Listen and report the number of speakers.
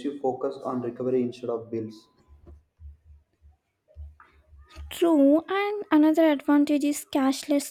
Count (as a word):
two